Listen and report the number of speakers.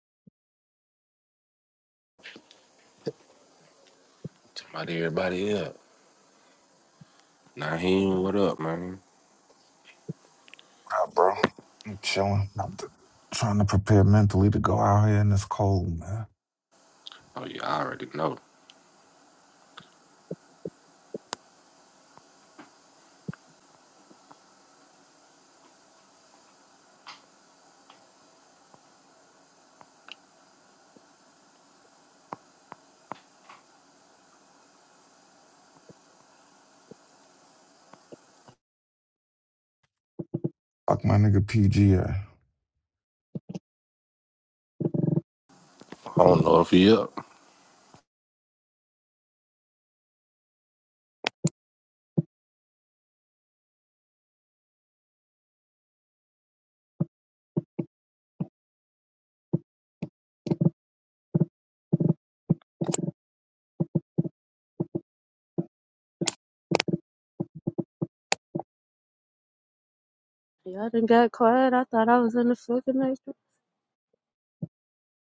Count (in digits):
3